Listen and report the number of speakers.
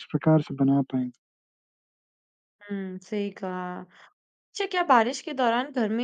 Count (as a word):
two